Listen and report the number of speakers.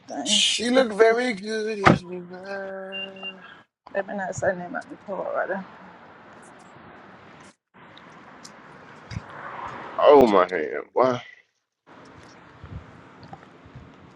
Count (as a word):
three